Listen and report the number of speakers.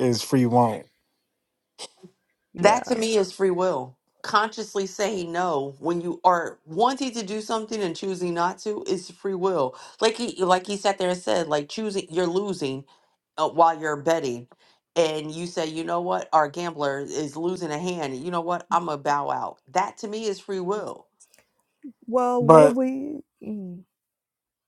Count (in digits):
3